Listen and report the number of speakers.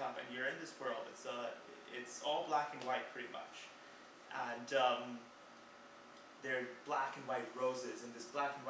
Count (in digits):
1